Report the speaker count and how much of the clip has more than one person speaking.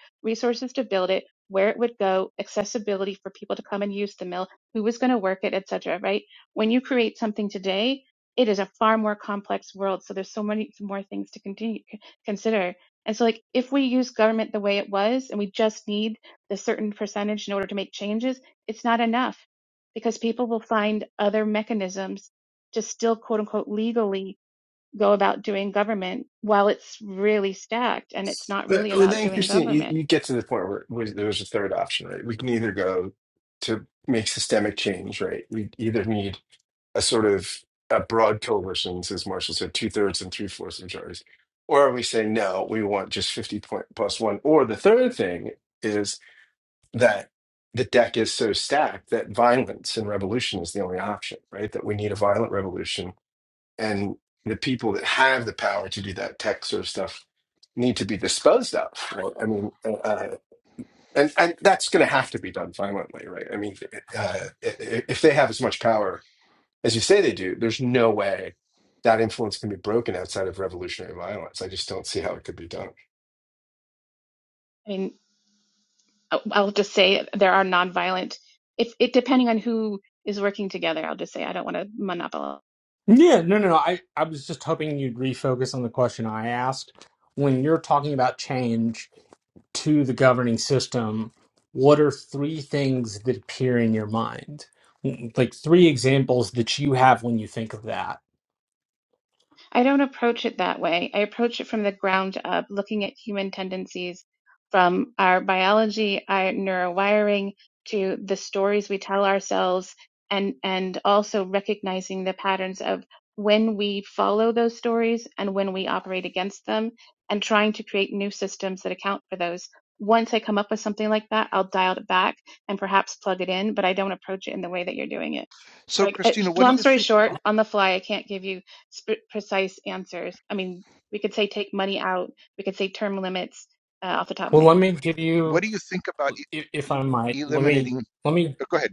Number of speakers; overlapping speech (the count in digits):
4, about 2%